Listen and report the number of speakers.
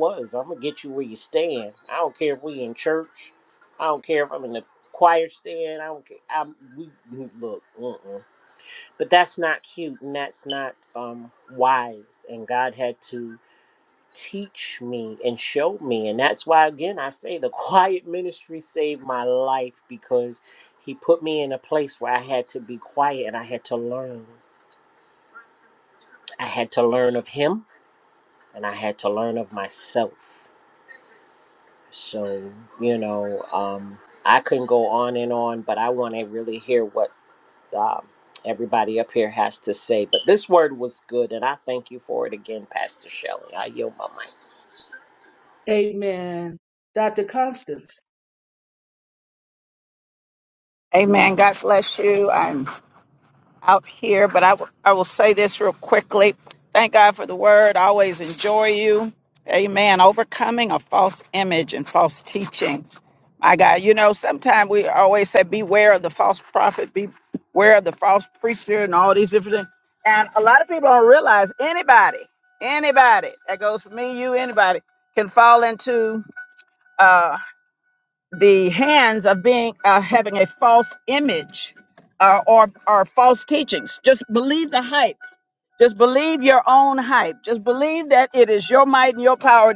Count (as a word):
three